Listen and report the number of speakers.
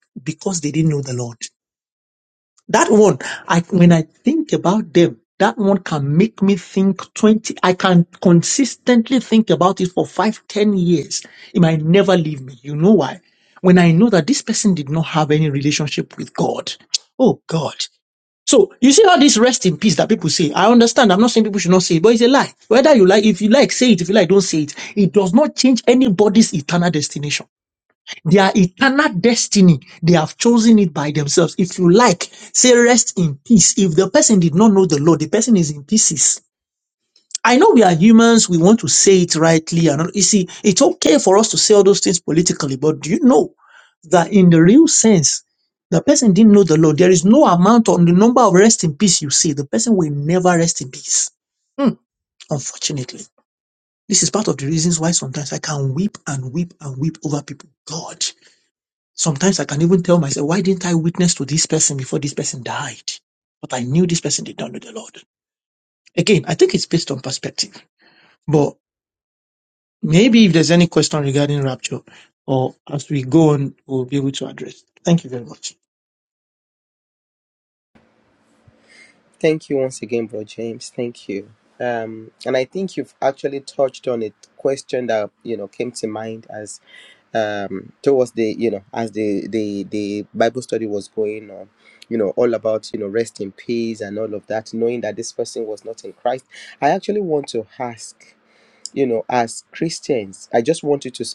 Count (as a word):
two